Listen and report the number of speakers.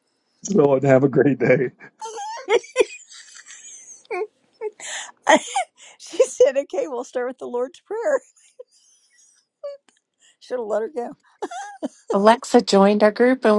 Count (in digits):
3